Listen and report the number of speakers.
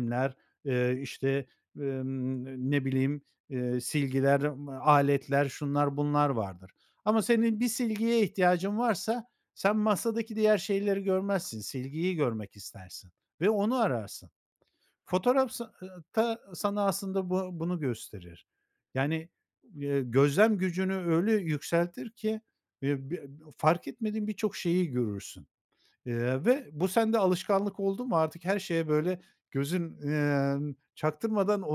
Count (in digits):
1